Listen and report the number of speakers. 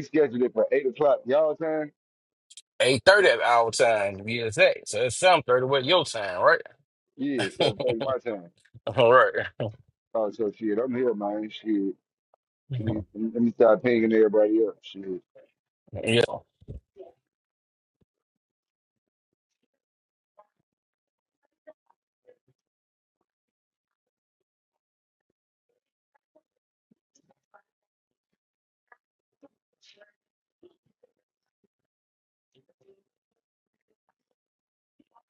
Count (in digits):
2